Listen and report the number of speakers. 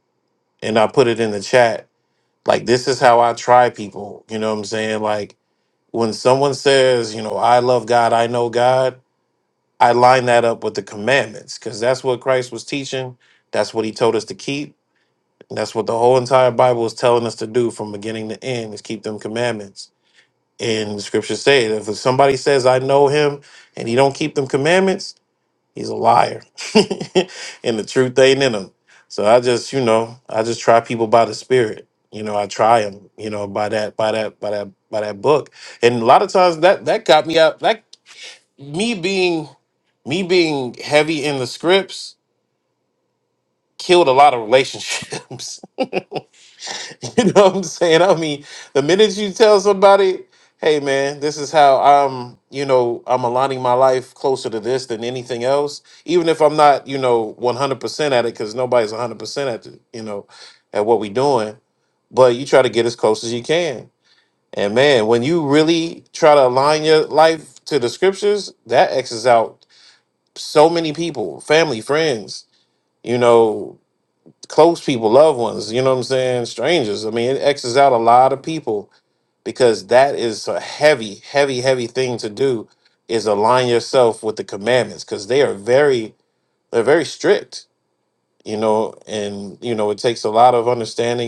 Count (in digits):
1